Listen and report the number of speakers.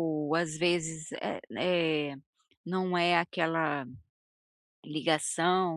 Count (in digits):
1